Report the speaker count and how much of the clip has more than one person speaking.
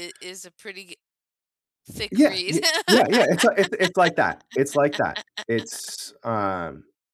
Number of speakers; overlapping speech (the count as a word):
two, about 8%